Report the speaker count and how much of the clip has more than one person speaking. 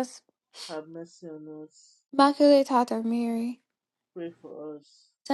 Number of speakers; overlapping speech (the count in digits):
2, no overlap